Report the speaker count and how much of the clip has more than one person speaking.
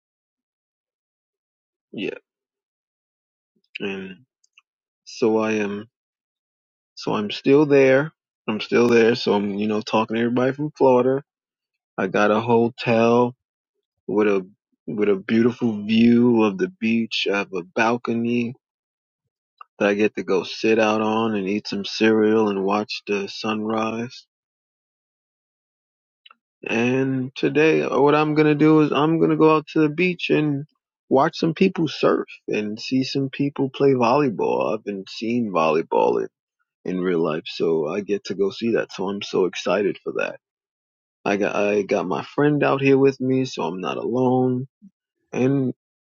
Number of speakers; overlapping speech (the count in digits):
1, no overlap